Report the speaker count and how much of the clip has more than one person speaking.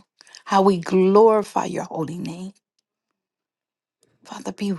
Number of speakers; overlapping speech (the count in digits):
1, no overlap